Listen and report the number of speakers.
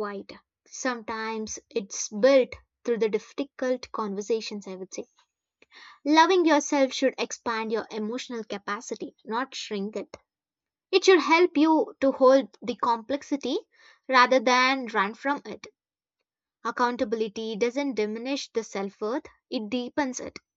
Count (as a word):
one